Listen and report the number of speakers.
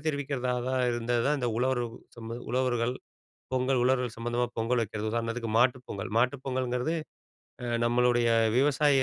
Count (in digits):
1